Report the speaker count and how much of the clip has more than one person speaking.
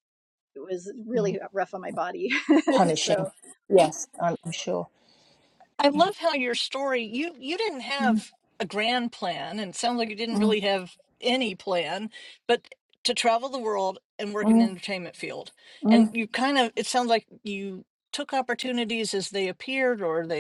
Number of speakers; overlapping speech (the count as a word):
three, about 7%